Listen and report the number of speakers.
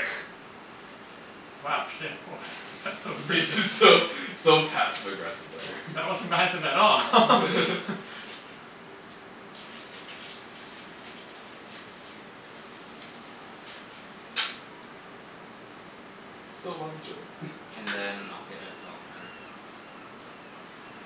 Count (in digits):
3